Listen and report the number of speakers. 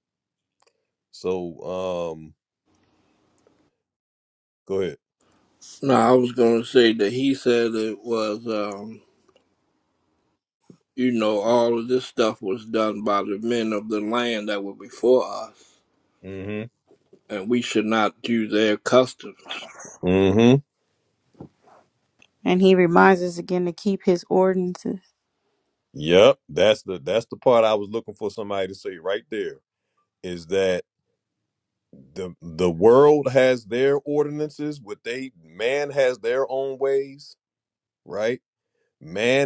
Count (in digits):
3